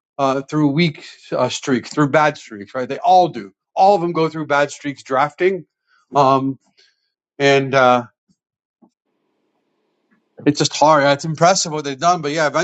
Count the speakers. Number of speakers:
1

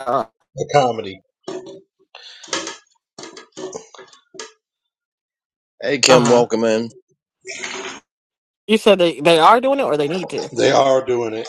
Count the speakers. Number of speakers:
3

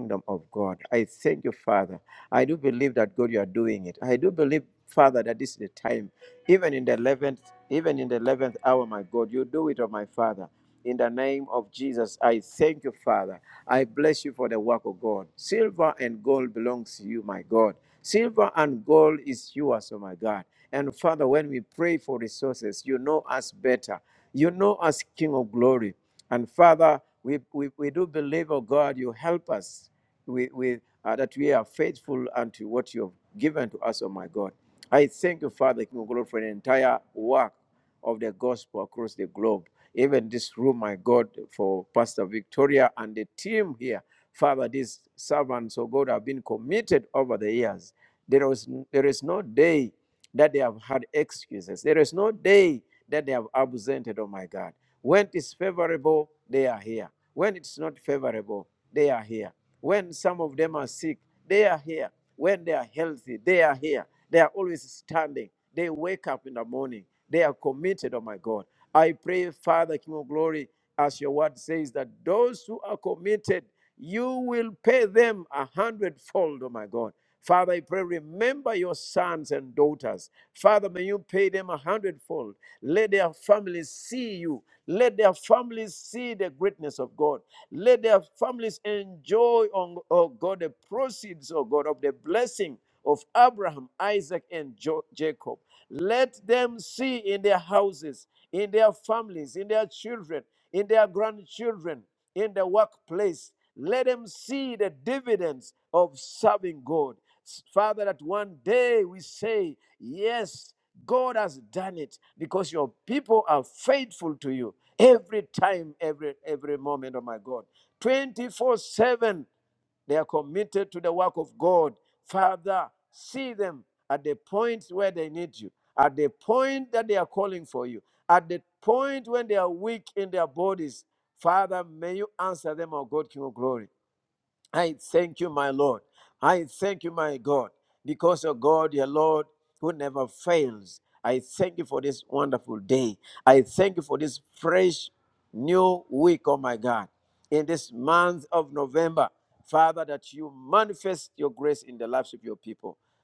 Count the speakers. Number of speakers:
1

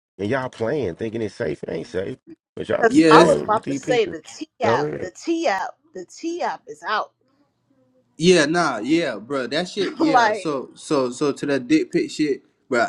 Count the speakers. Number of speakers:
3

